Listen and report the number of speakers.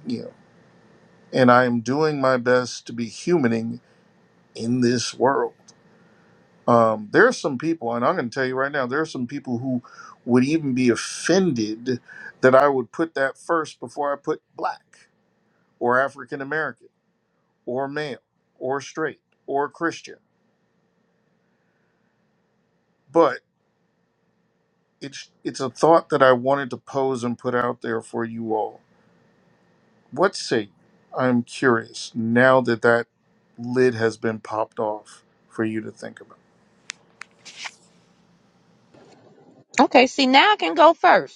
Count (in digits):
2